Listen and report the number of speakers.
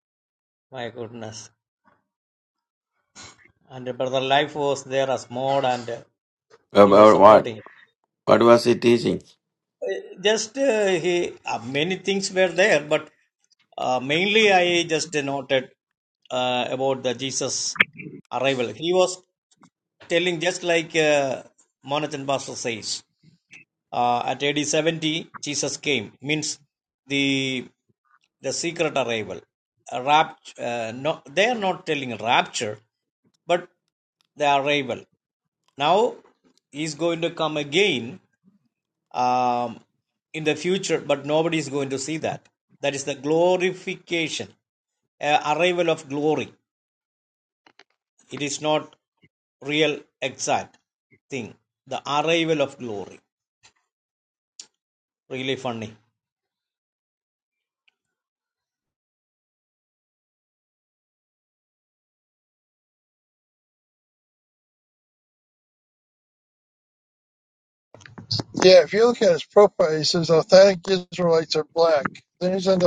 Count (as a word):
three